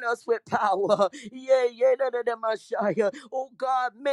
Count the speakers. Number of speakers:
1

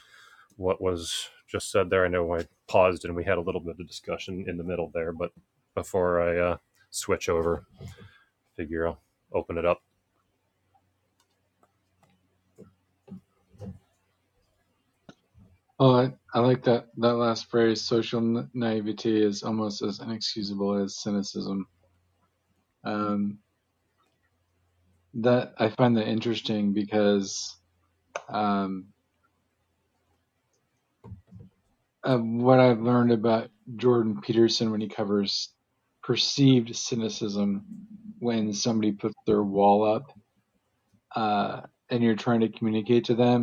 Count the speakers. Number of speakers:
2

